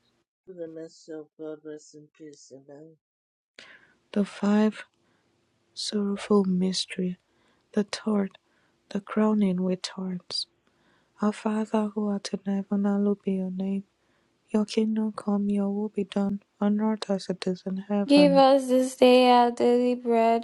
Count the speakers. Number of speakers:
3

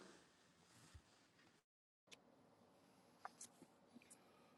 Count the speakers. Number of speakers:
0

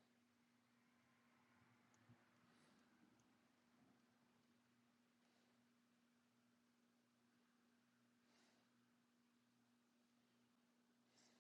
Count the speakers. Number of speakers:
0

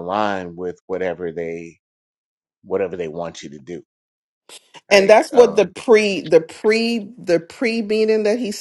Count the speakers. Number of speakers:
2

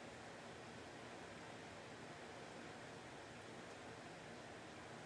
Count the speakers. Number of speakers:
0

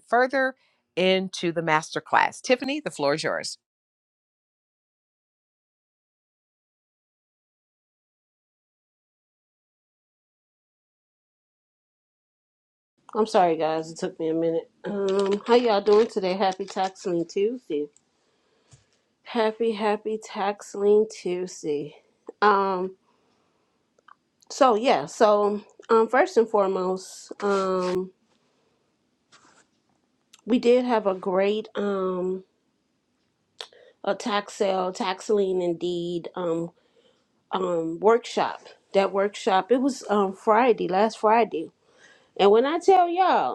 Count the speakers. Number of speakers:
2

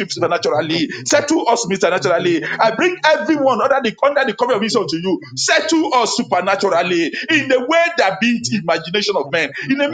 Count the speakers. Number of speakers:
1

